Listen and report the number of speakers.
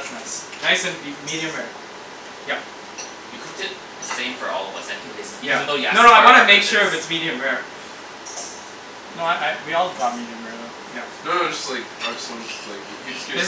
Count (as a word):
four